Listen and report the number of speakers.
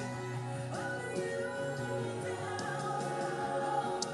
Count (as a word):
zero